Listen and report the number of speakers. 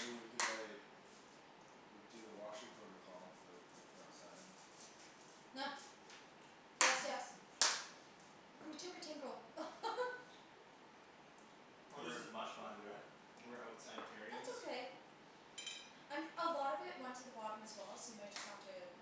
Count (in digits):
4